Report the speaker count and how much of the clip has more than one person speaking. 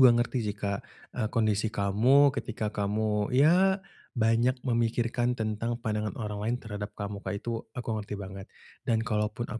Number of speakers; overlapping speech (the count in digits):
1, no overlap